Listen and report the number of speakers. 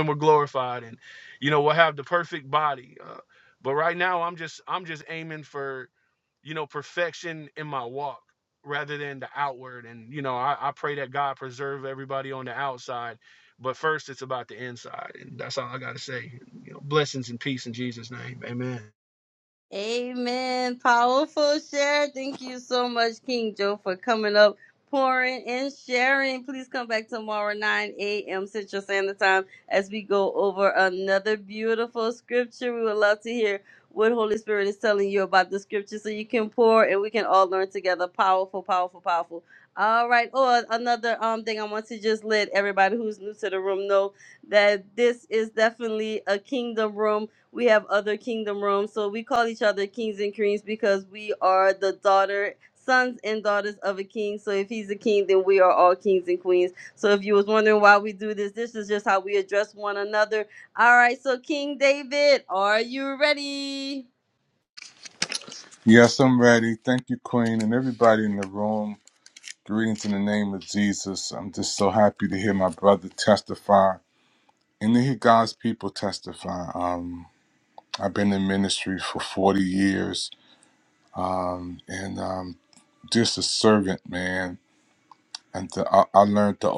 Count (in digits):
3